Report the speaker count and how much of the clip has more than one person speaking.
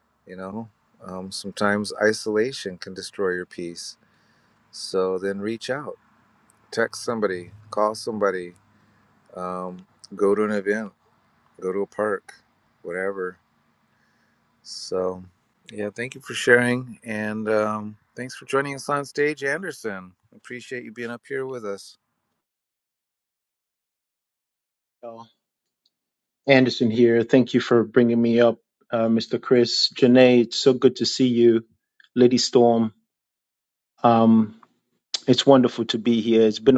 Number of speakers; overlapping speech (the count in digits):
2, no overlap